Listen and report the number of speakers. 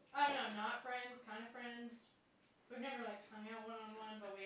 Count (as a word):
one